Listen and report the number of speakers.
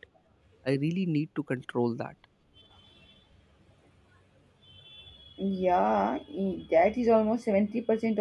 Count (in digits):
2